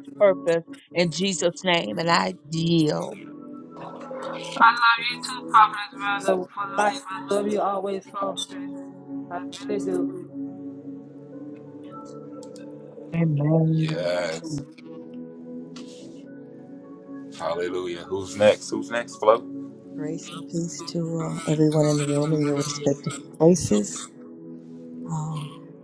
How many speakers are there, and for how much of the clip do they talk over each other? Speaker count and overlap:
4, about 1%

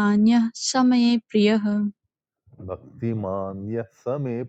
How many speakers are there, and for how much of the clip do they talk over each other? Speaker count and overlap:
2, no overlap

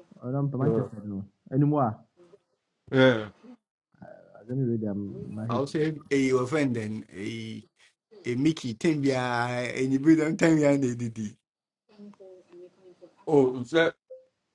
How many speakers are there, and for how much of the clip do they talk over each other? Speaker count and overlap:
3, about 3%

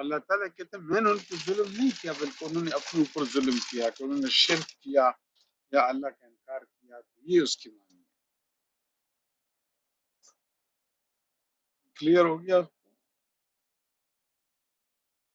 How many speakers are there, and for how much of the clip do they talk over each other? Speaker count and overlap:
1, no overlap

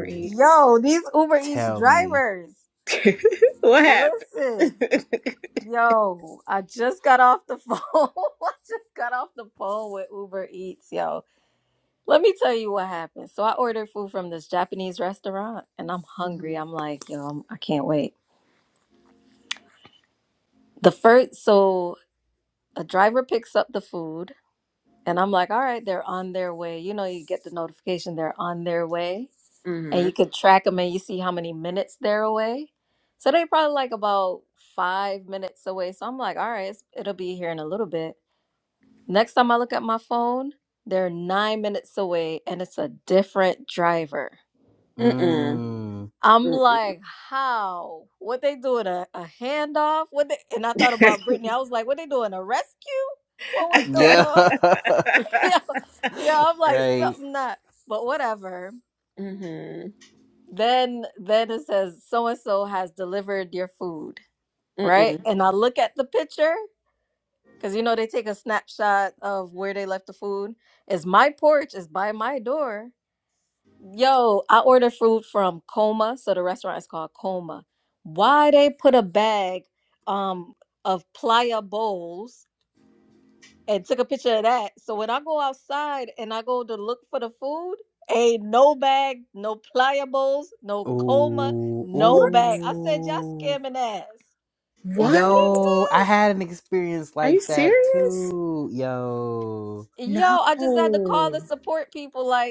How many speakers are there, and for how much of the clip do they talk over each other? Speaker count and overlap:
3, about 9%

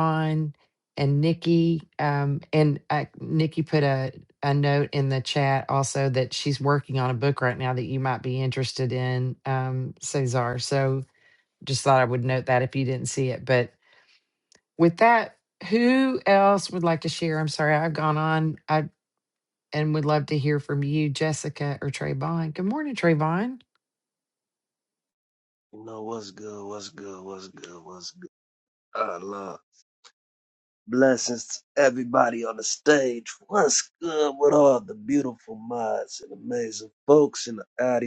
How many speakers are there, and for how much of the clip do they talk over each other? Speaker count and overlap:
2, no overlap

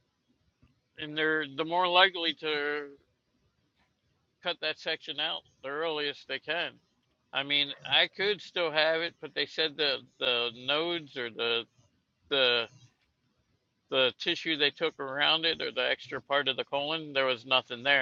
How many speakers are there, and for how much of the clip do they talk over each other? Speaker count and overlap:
1, no overlap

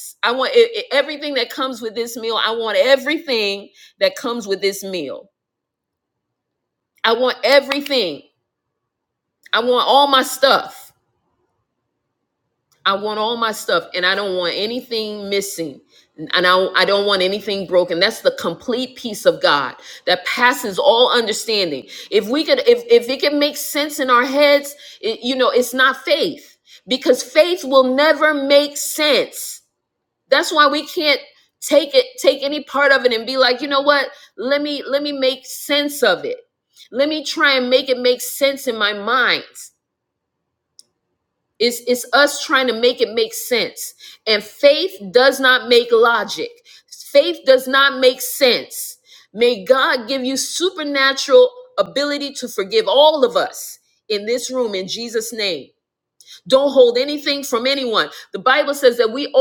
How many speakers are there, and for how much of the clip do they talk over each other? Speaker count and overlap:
1, no overlap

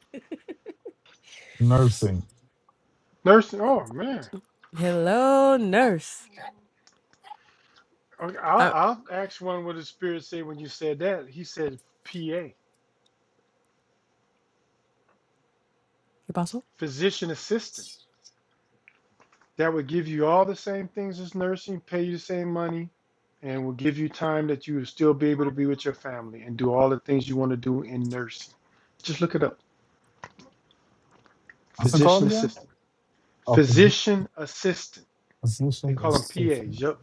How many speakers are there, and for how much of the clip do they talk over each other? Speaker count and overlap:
3, about 6%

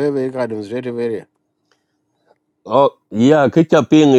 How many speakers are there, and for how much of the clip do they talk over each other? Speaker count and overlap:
2, no overlap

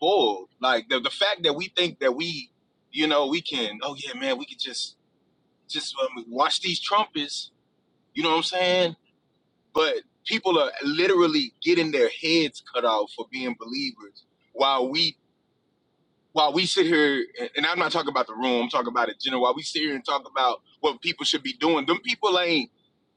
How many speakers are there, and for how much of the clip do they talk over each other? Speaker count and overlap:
1, no overlap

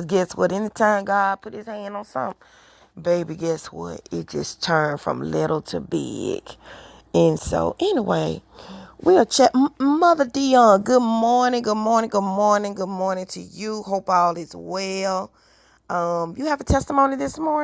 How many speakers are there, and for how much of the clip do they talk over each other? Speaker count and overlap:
1, no overlap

